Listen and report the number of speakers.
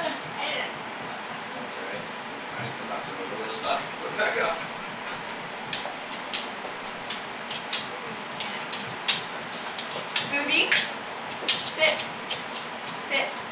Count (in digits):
2